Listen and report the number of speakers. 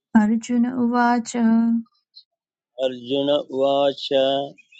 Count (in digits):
2